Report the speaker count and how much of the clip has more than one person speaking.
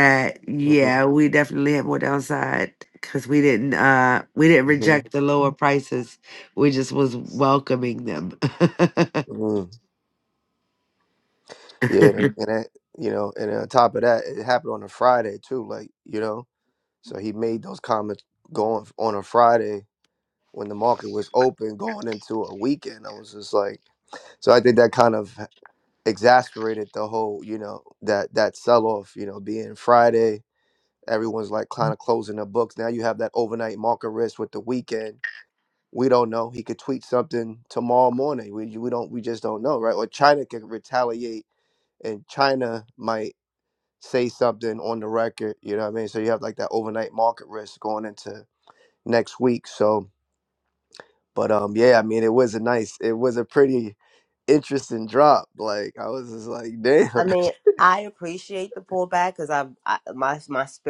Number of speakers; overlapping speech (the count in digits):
3, about 1%